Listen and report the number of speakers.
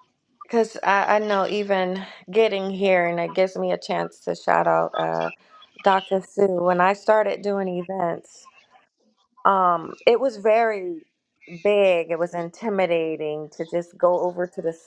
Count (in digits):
1